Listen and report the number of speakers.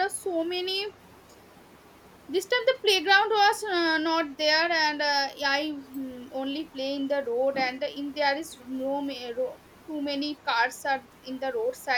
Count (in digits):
1